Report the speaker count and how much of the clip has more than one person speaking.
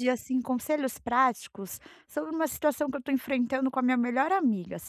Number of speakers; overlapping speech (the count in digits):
1, no overlap